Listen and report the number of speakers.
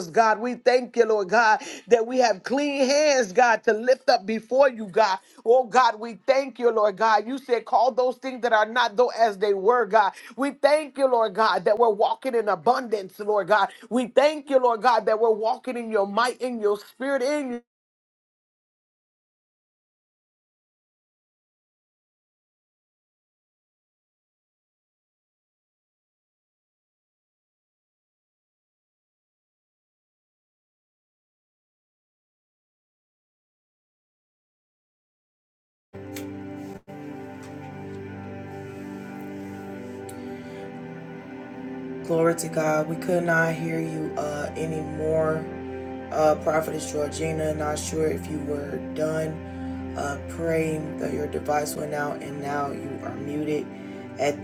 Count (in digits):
2